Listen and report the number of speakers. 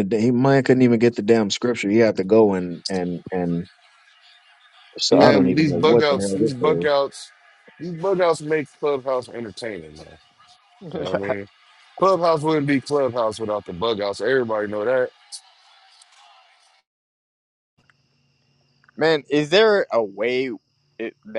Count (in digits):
3